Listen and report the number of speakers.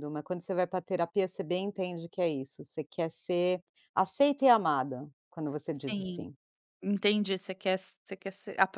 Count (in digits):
2